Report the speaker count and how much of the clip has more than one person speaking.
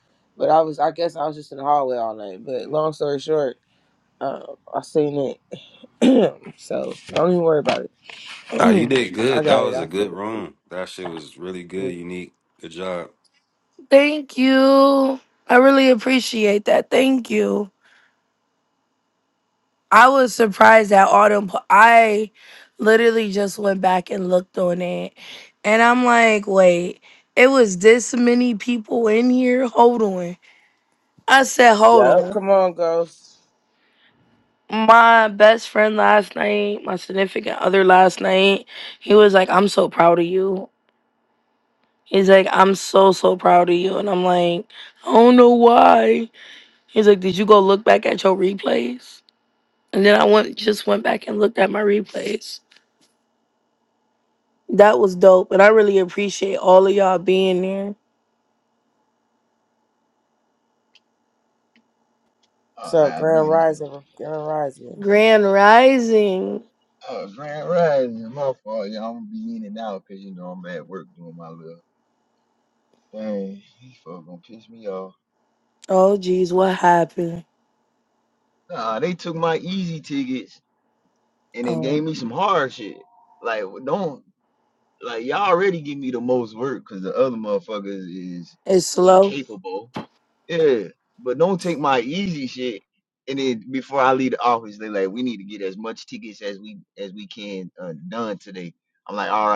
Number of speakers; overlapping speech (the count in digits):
4, about 3%